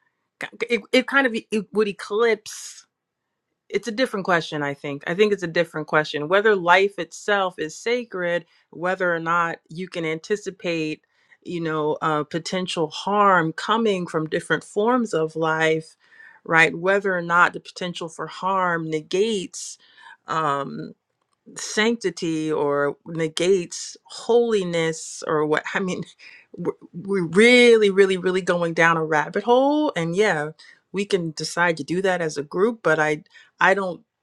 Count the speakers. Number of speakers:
1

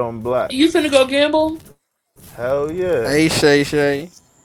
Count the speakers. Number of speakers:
3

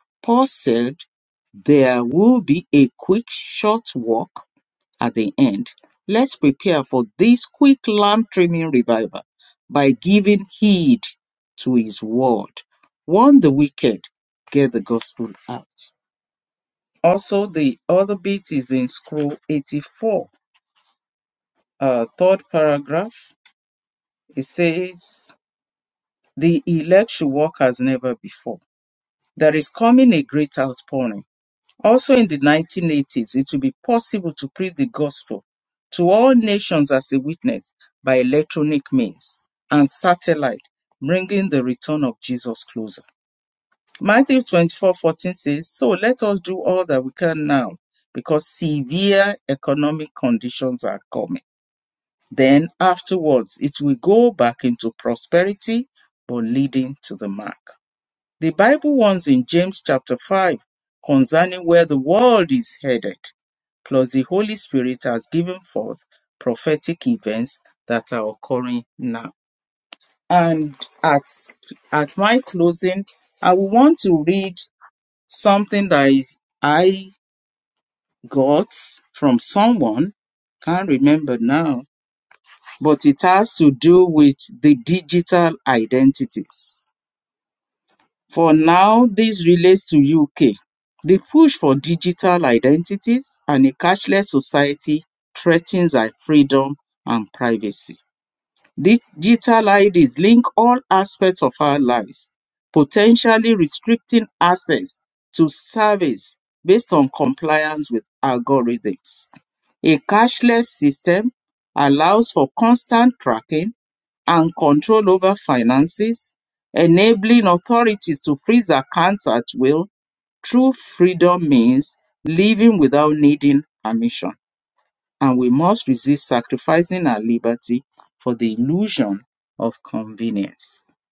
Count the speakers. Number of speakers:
1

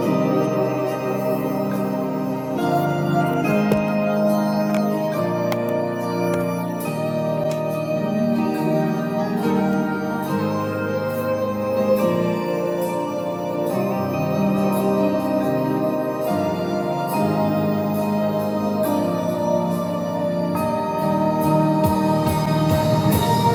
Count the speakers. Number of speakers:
0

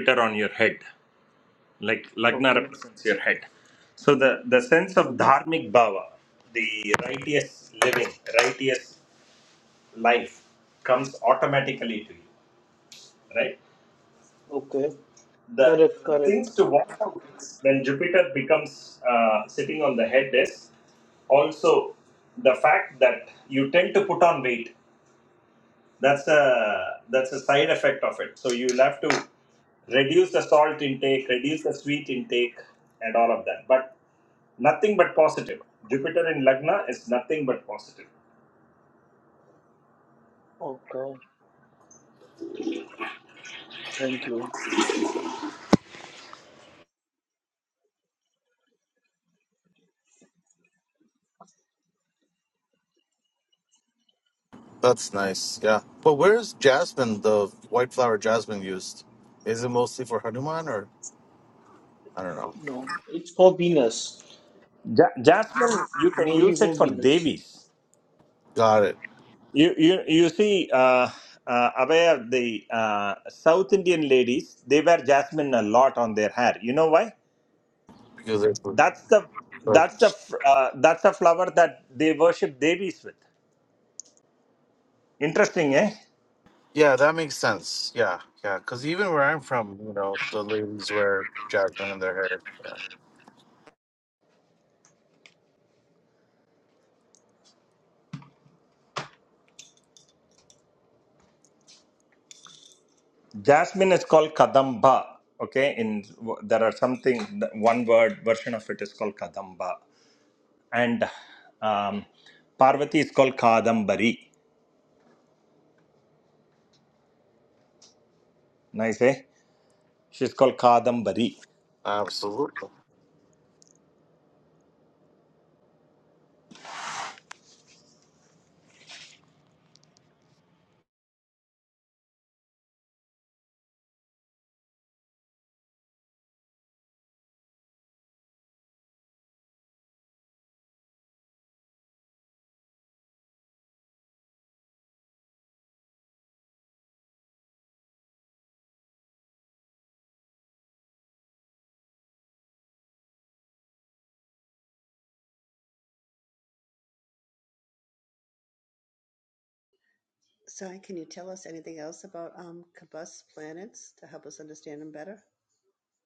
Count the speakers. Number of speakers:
4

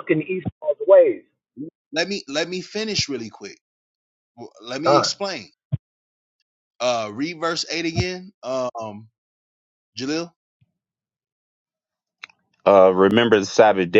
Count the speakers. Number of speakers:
3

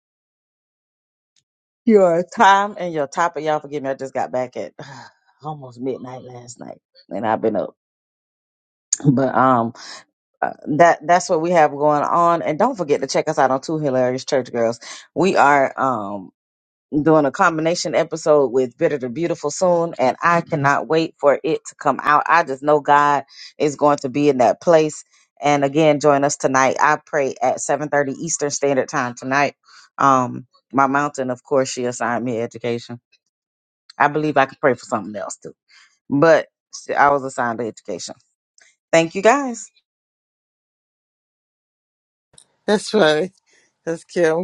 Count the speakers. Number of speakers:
2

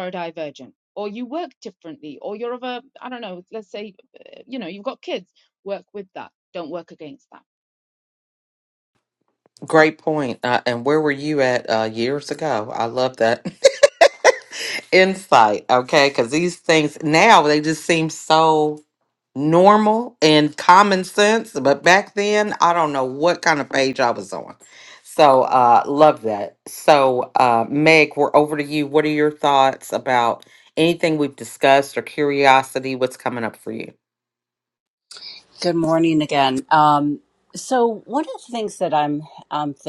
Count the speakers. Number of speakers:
3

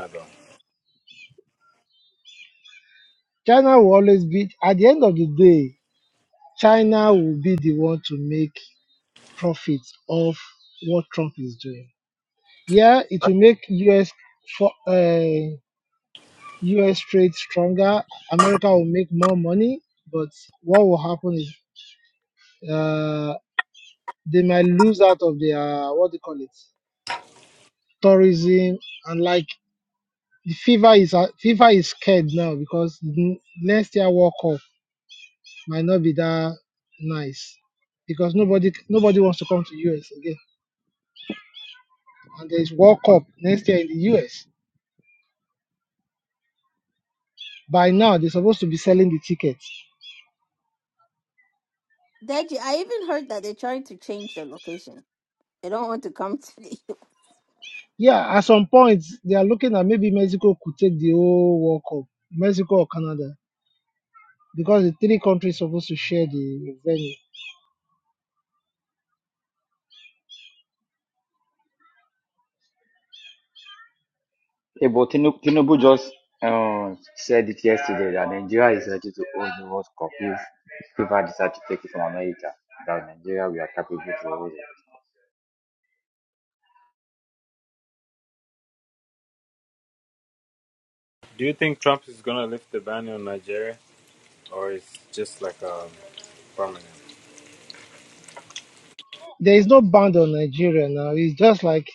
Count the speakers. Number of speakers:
4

